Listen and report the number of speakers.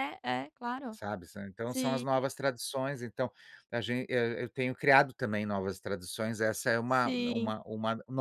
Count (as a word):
two